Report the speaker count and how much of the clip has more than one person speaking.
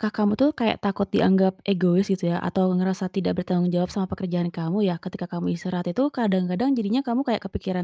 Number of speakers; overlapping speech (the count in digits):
1, no overlap